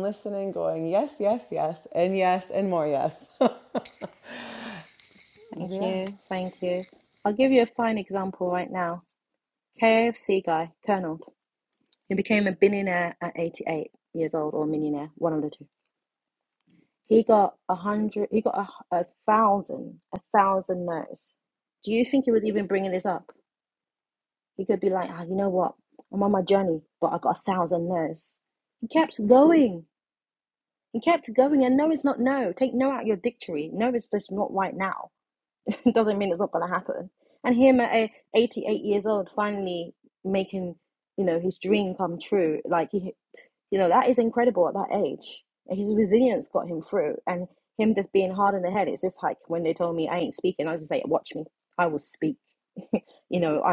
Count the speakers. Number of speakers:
2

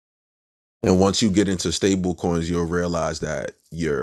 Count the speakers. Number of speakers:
1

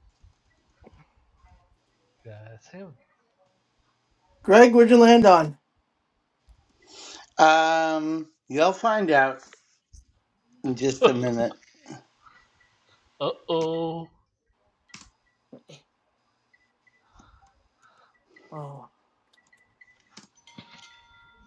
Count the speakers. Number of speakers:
3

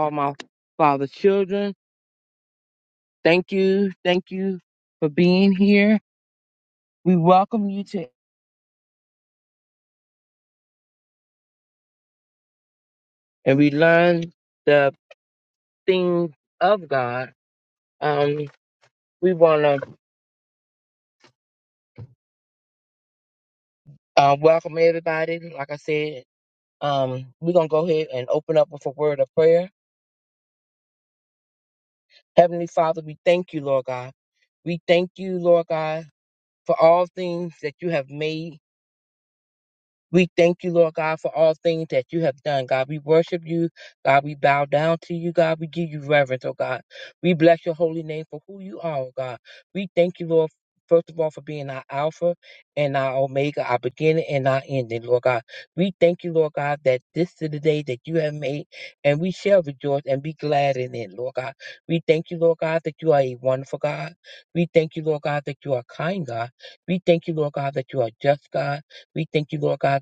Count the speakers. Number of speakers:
1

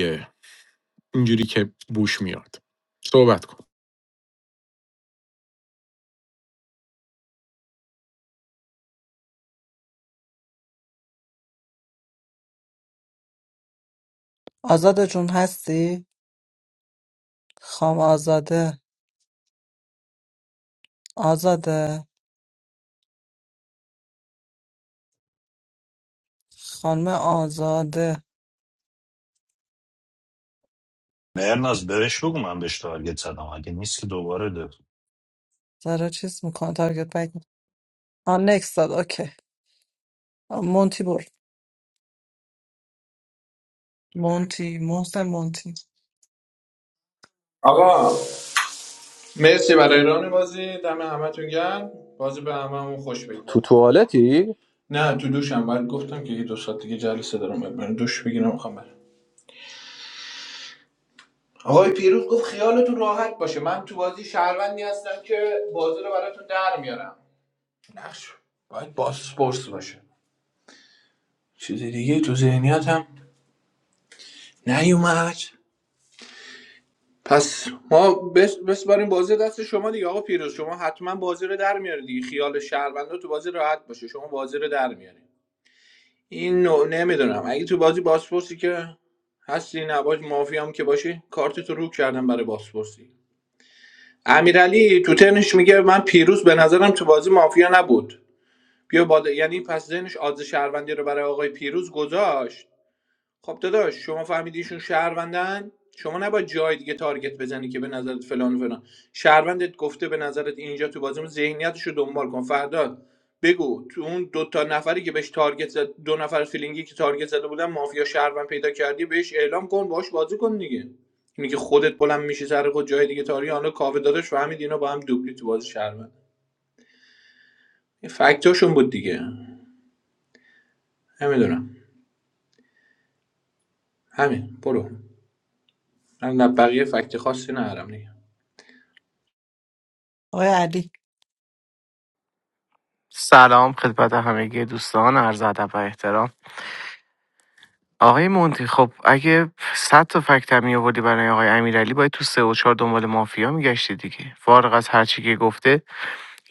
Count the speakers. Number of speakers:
6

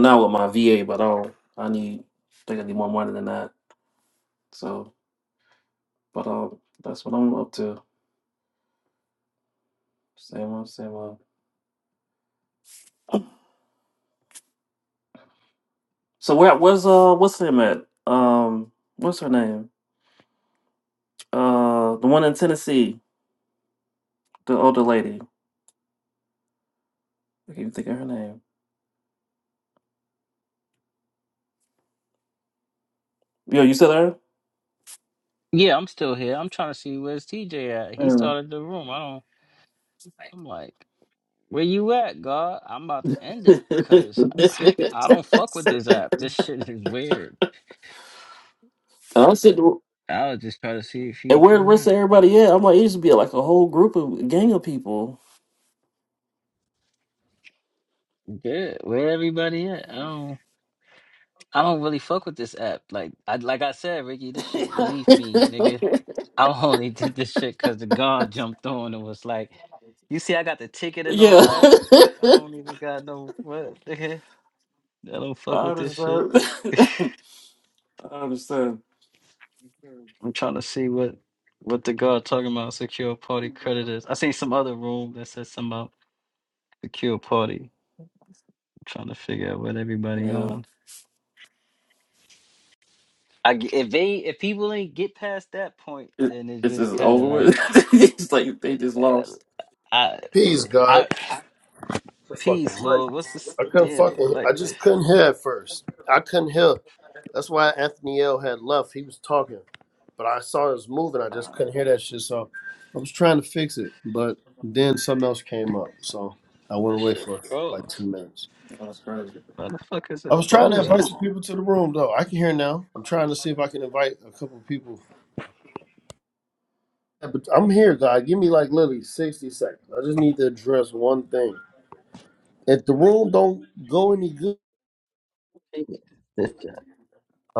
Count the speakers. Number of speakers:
3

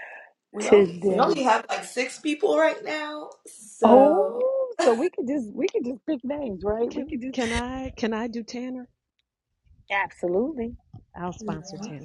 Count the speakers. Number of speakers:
3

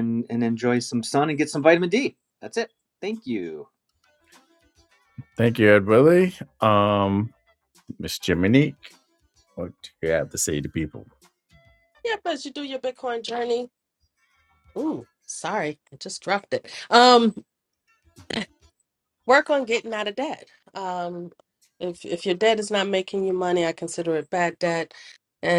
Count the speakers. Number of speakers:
3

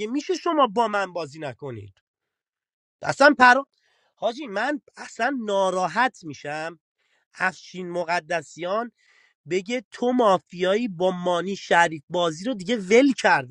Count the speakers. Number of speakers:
1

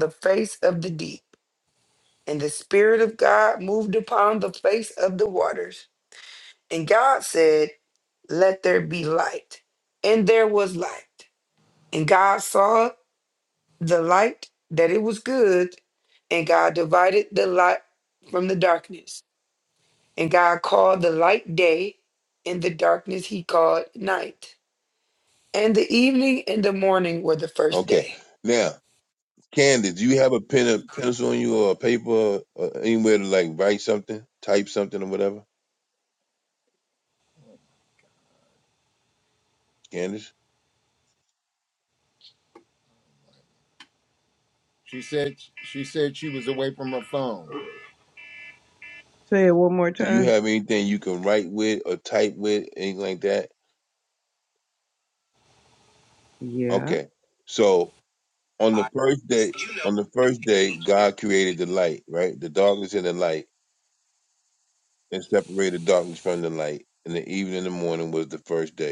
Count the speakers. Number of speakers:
4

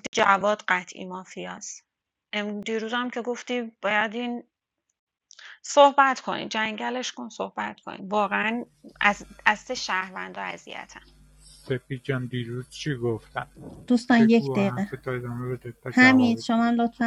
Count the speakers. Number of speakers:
3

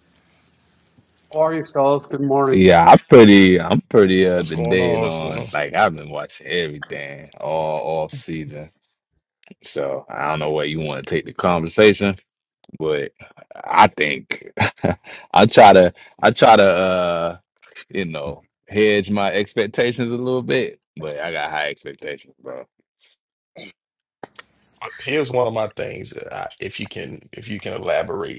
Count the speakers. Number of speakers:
3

